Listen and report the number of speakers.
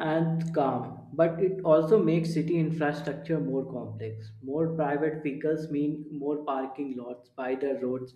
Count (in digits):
1